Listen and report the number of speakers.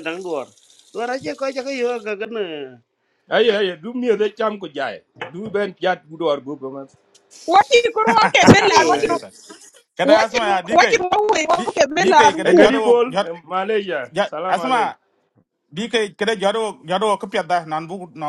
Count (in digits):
4